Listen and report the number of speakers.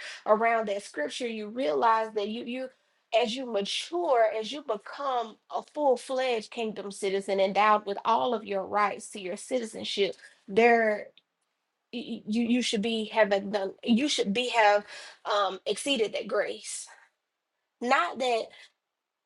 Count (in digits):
1